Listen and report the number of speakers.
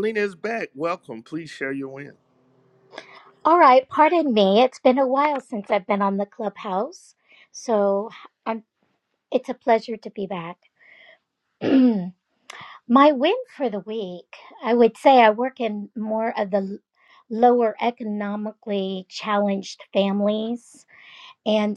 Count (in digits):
2